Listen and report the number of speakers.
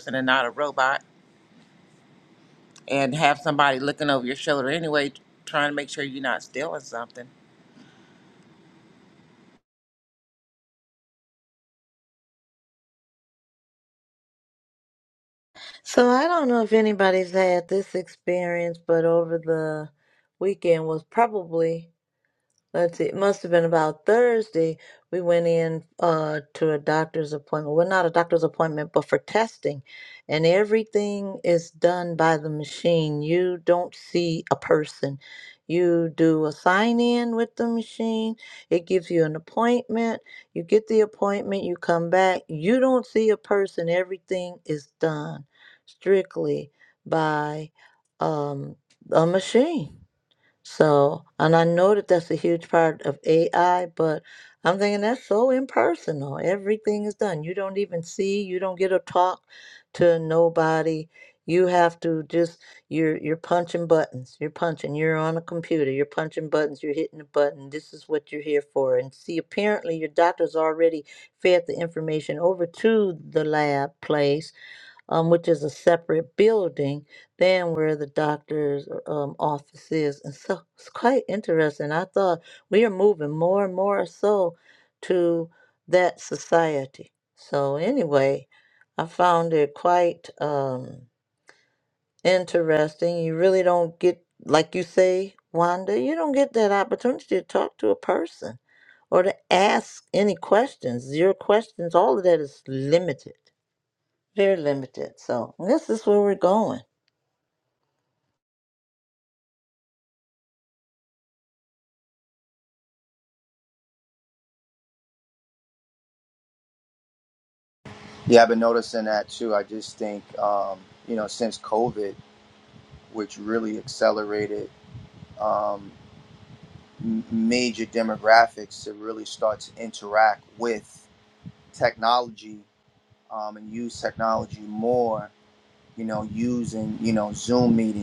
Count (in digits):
3